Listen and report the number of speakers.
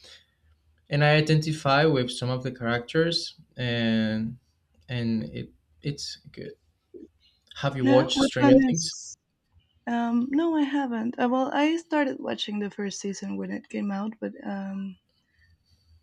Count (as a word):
two